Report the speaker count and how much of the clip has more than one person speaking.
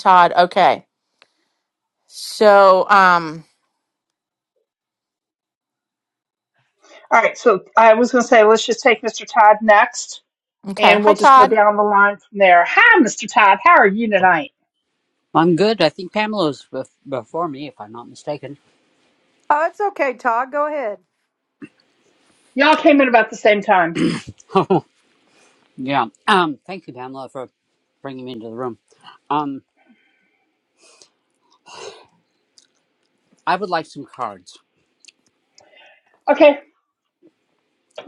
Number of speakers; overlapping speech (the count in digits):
4, about 2%